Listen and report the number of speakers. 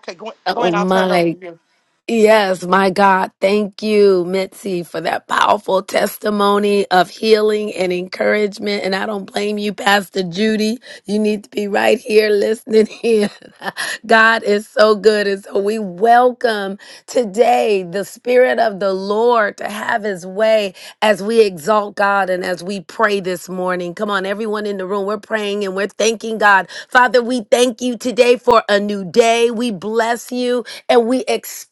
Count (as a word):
two